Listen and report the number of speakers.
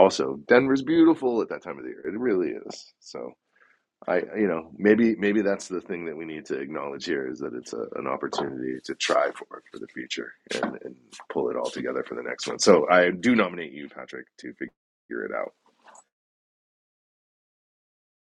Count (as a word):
one